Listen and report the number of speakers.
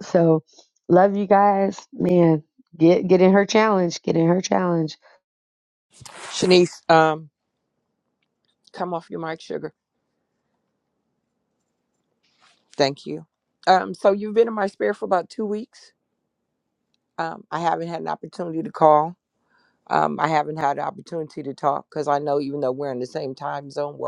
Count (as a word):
two